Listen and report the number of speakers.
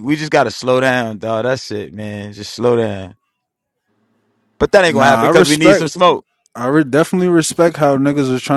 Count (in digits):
2